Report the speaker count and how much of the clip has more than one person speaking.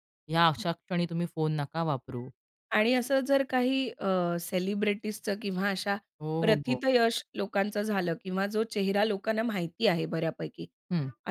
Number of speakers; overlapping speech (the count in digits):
2, about 6%